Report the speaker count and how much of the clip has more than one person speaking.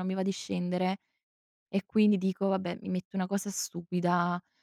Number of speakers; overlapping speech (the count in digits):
1, no overlap